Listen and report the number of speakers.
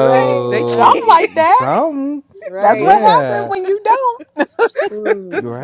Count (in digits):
3